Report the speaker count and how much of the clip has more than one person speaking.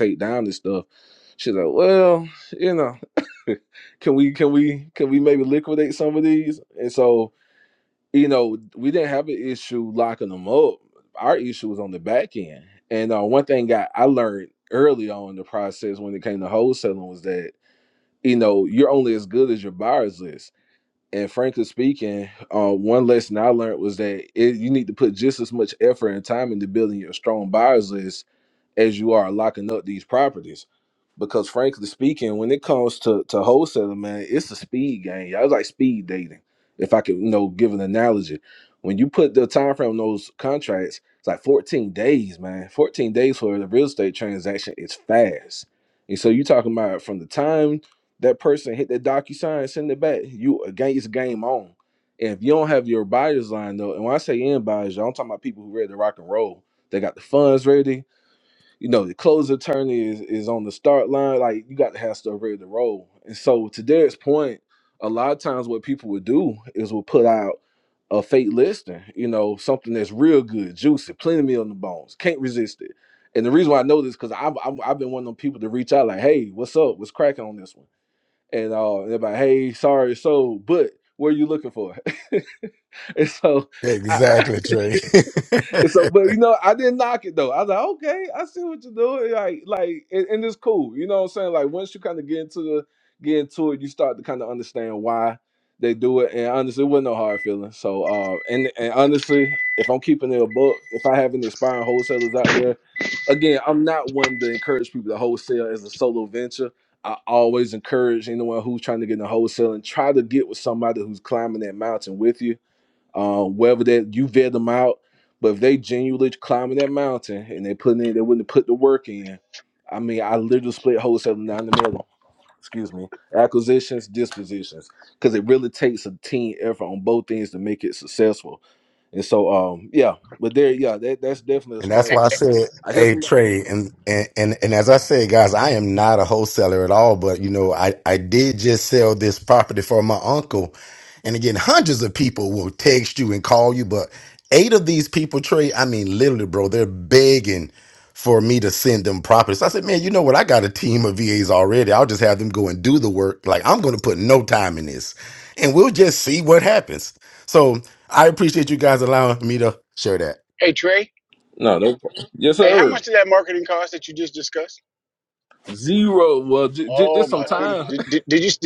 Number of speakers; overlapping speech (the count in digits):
3, about 2%